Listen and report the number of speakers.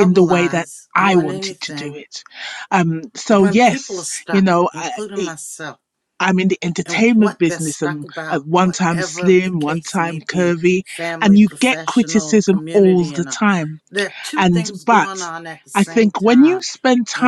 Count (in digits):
2